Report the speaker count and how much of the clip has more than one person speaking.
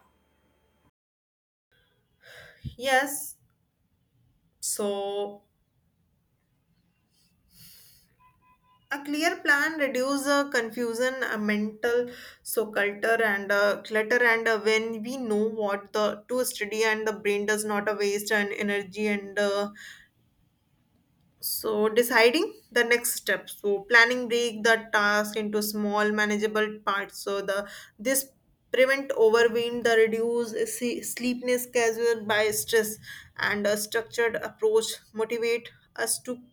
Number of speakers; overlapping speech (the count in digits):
1, no overlap